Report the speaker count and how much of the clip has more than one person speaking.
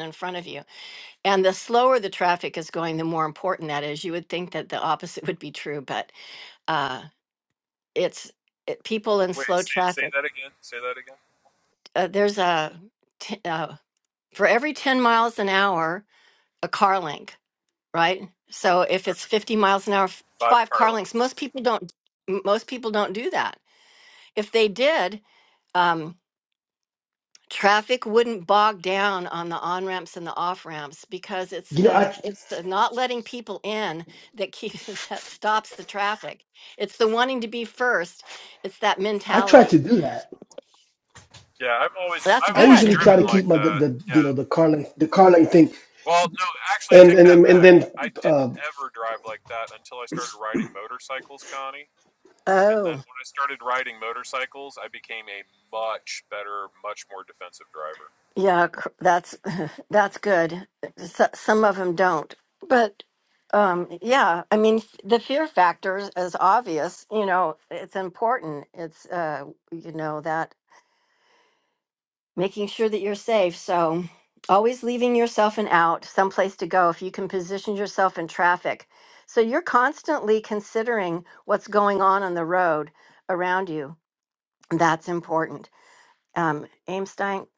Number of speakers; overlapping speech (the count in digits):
3, about 7%